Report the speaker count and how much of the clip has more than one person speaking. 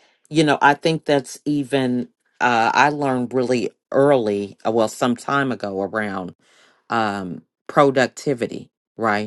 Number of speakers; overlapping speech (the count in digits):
1, no overlap